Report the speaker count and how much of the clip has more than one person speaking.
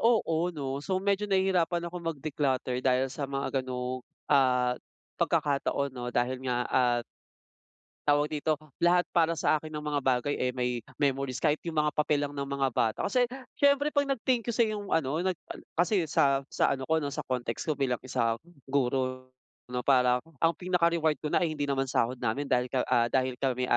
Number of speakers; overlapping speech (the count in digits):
1, no overlap